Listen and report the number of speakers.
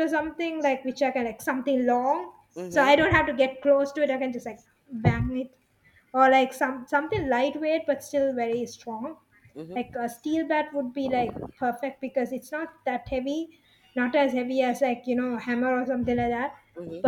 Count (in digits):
2